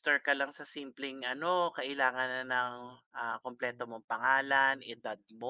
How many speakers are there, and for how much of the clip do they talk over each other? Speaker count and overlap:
1, no overlap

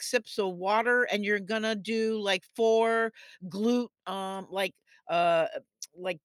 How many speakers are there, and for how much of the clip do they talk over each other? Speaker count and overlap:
1, no overlap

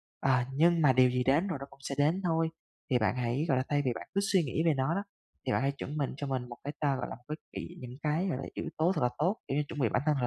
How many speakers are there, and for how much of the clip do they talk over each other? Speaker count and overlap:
1, no overlap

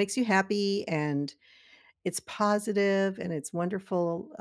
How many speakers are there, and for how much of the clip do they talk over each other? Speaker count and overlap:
1, no overlap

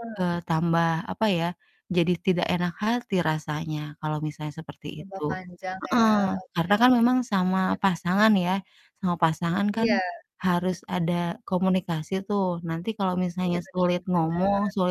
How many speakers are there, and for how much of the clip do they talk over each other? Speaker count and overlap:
2, about 18%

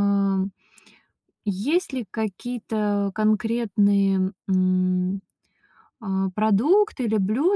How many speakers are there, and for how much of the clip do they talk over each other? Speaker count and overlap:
1, no overlap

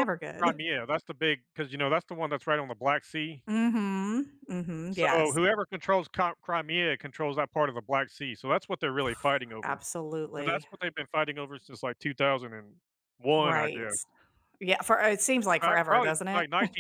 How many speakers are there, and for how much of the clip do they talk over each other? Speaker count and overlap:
2, about 12%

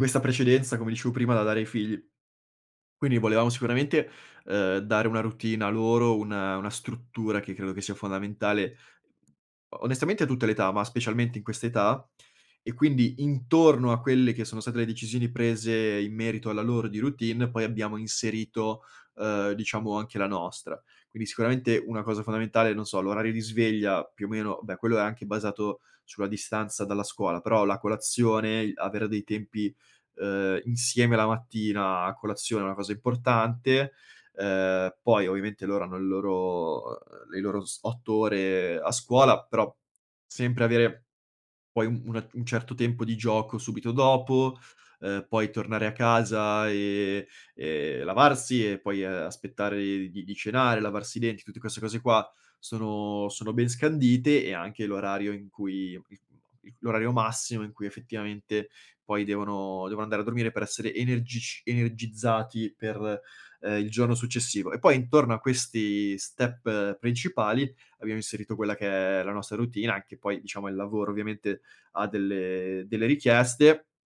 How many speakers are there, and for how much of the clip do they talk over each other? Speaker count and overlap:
1, no overlap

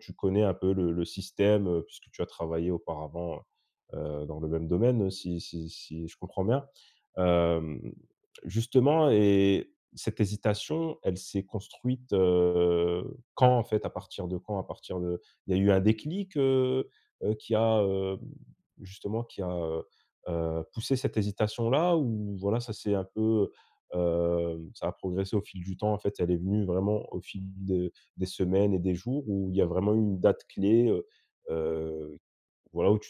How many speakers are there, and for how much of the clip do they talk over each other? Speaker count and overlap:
1, no overlap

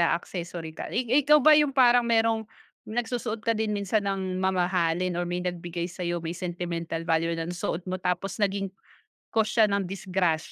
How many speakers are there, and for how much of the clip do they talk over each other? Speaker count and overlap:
1, no overlap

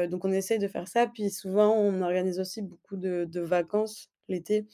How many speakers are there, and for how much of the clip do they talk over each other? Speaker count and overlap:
1, no overlap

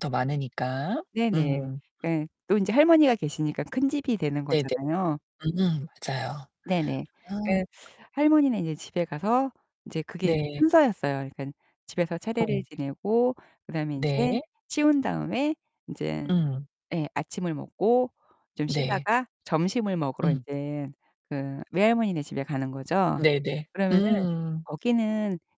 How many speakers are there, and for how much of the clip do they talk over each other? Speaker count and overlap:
2, about 11%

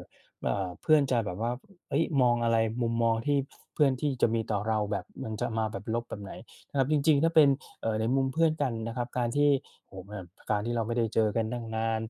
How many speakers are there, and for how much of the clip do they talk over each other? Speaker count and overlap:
1, no overlap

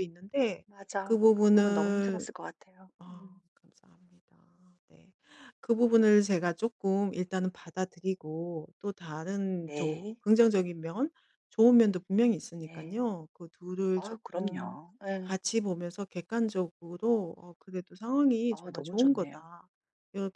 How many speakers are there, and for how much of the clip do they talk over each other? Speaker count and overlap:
2, about 18%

